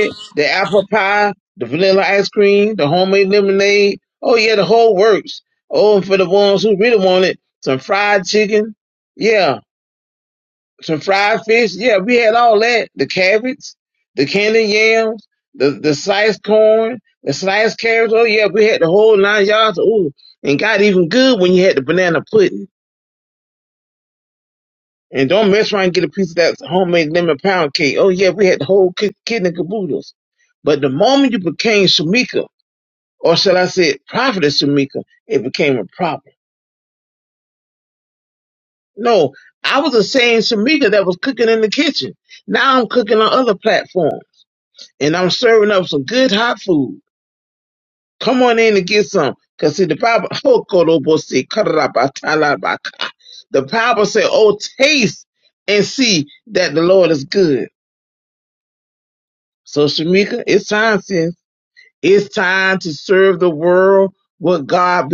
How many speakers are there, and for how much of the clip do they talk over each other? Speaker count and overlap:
1, no overlap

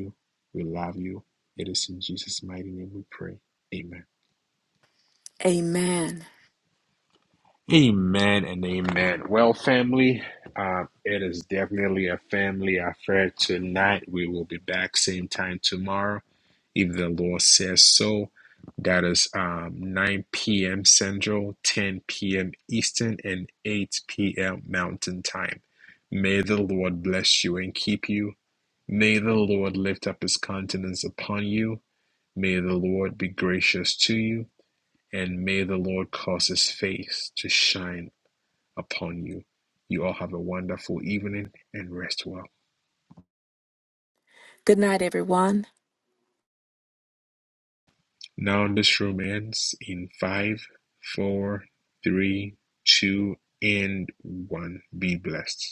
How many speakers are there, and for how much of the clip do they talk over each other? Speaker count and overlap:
2, no overlap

